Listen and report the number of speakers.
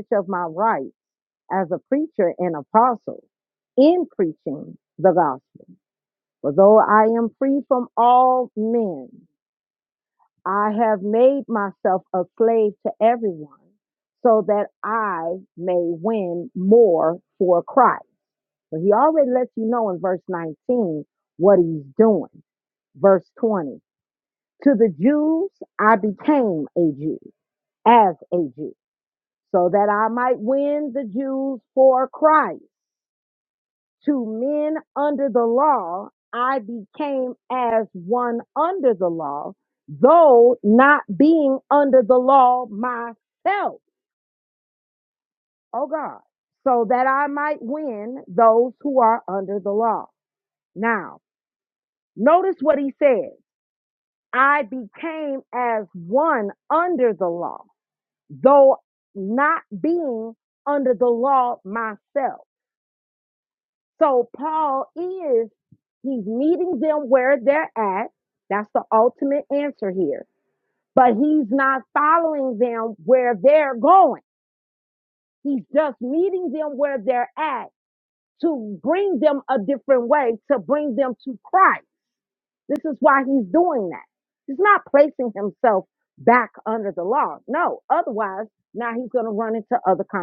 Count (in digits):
1